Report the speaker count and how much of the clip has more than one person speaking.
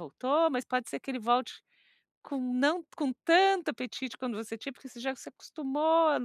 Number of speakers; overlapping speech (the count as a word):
one, no overlap